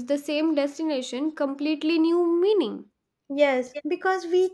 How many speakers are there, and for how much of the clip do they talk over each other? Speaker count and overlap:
2, no overlap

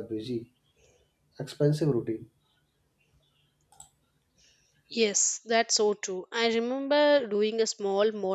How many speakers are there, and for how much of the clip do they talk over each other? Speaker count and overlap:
2, no overlap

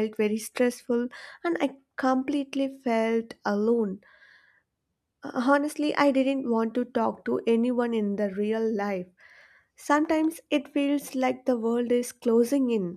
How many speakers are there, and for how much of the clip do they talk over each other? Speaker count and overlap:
1, no overlap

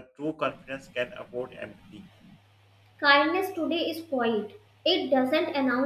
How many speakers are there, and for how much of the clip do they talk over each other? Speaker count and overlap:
2, no overlap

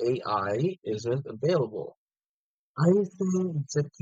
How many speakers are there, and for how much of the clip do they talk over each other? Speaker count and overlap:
1, no overlap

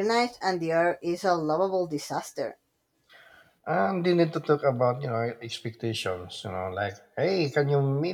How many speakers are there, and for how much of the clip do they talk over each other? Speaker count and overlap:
2, no overlap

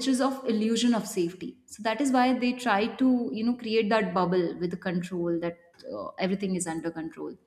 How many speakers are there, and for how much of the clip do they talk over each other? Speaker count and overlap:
1, no overlap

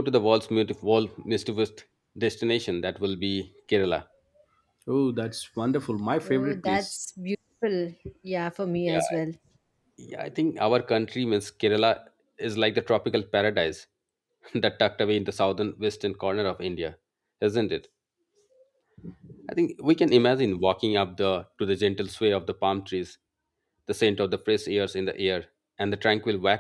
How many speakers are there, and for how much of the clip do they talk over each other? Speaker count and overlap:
3, about 3%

